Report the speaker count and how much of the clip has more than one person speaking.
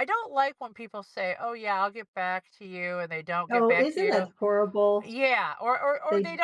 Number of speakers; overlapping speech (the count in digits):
2, about 18%